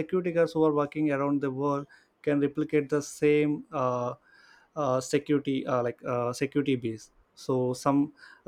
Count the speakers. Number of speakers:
1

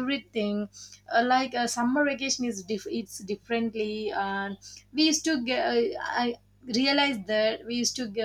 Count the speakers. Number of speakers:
1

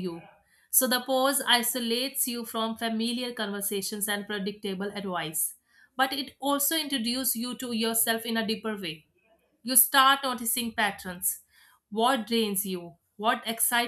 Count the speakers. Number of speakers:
1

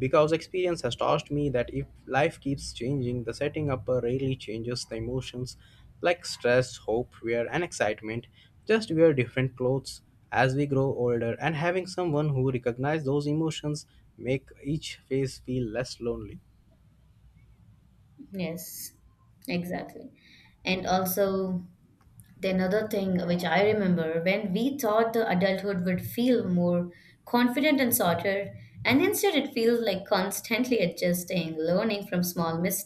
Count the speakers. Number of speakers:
2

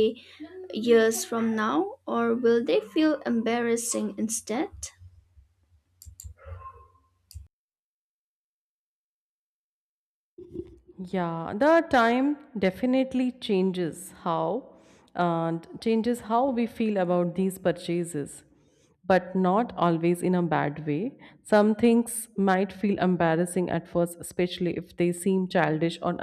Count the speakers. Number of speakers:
2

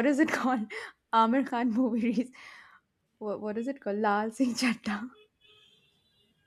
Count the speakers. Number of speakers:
1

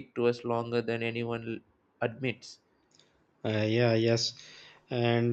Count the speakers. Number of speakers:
2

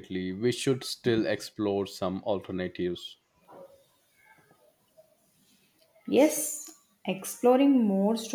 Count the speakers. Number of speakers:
2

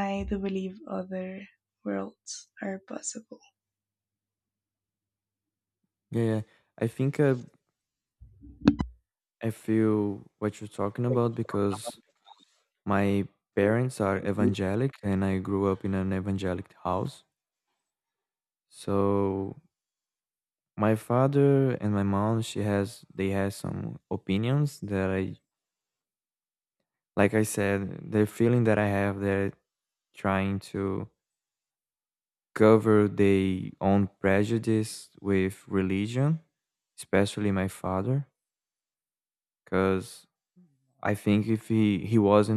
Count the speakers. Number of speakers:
2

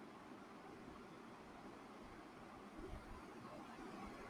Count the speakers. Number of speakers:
0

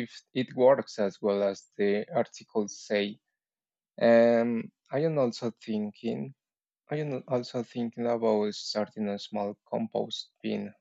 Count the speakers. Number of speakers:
1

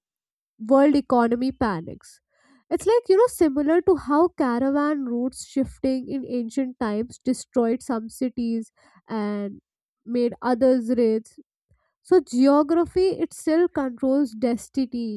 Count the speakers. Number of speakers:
1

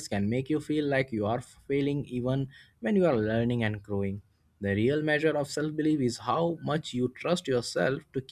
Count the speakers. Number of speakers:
1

